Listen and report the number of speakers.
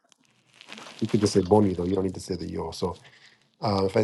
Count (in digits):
1